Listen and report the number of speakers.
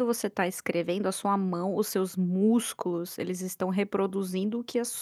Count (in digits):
1